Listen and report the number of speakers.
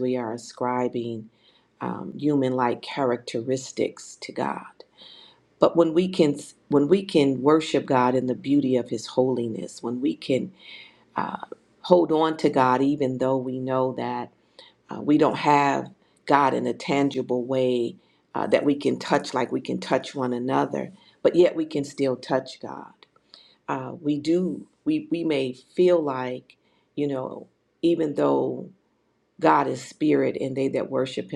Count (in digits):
1